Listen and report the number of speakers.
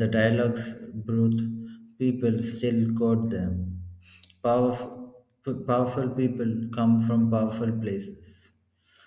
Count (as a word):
one